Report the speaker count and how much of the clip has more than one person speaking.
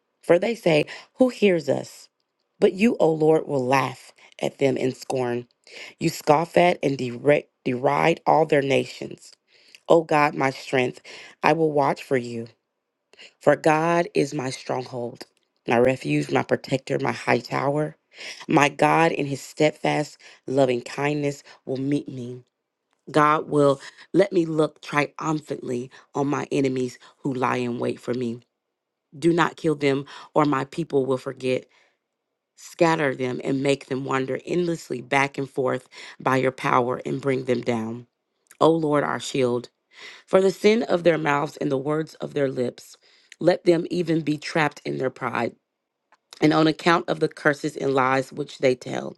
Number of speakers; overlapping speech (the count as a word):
one, no overlap